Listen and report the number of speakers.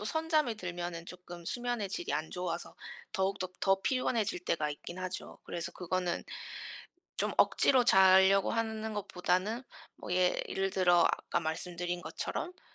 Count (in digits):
1